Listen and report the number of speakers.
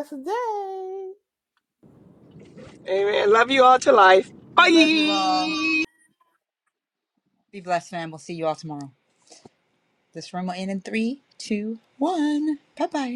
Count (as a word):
three